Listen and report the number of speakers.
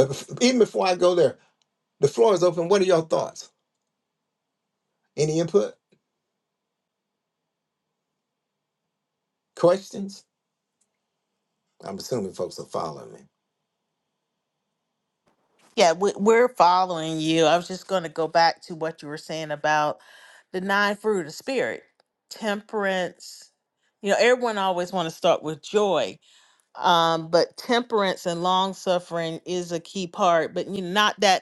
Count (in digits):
2